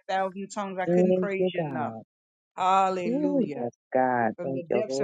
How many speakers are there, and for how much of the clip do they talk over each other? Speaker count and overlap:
2, about 46%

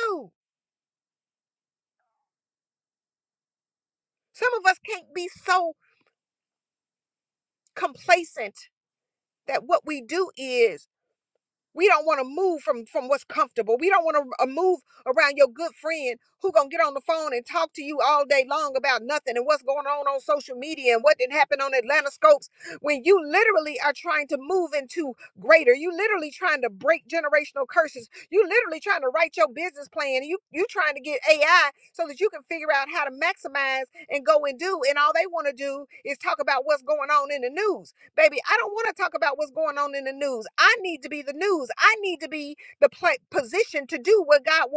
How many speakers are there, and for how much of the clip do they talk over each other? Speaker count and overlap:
1, no overlap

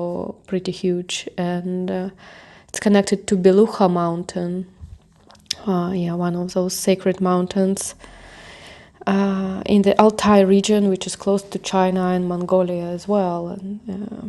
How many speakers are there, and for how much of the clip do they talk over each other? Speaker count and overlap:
1, no overlap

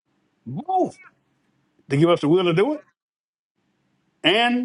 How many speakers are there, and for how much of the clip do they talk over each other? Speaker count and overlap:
1, no overlap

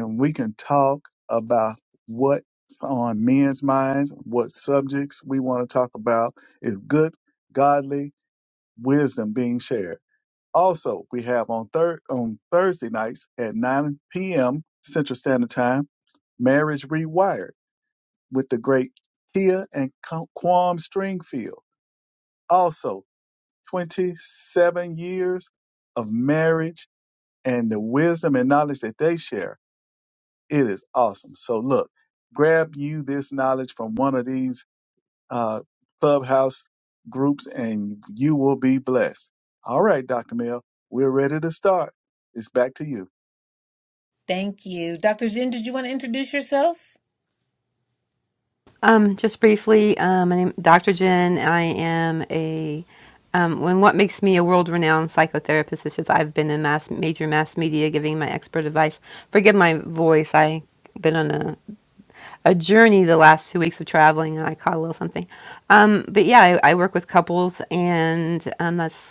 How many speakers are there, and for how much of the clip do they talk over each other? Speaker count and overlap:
3, no overlap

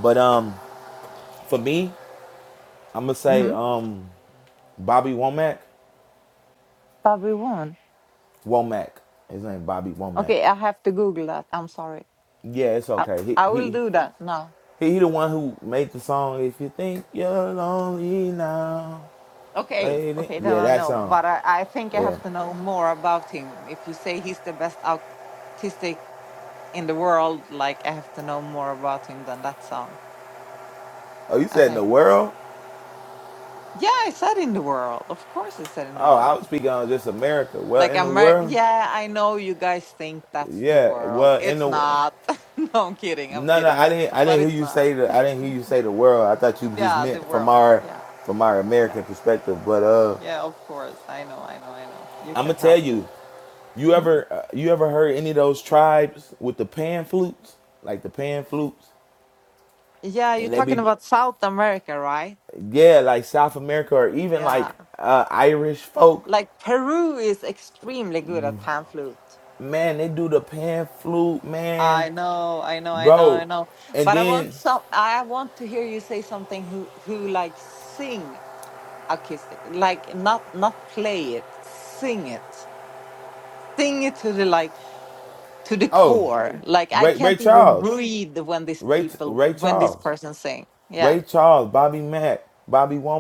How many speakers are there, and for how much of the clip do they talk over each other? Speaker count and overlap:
2, about 15%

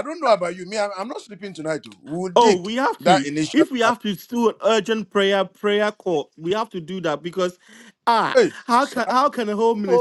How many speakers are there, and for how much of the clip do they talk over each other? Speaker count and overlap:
2, about 16%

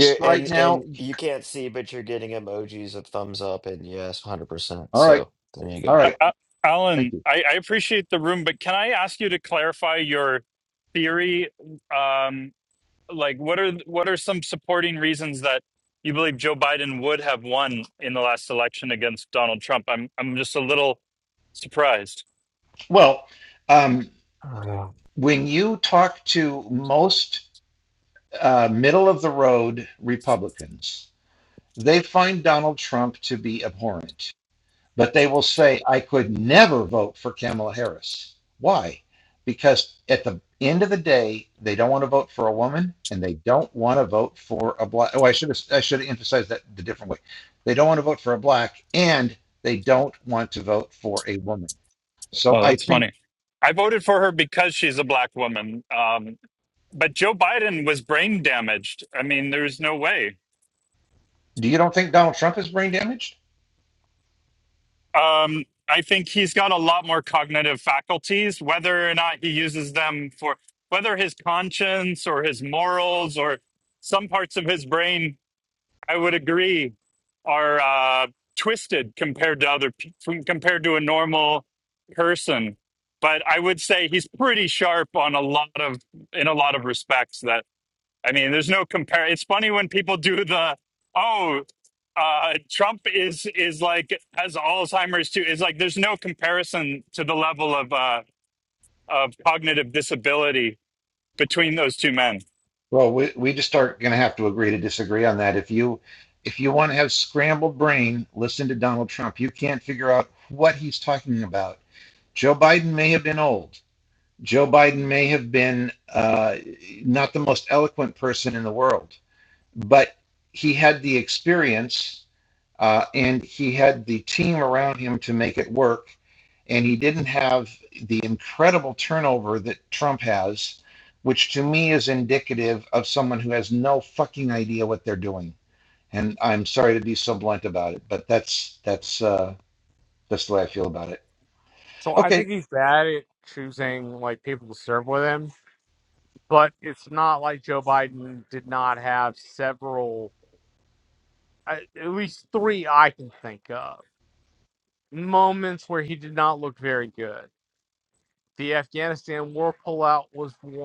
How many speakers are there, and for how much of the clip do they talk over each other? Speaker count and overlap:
4, about 2%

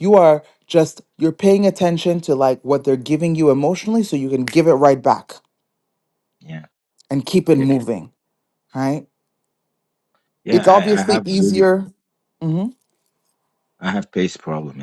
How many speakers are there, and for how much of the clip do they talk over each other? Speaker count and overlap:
2, about 8%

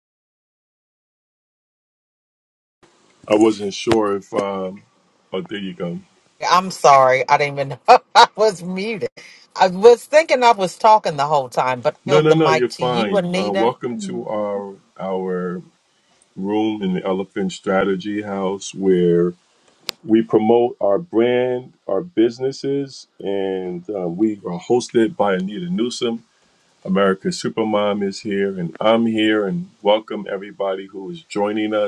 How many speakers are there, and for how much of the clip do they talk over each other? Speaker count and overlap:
2, about 5%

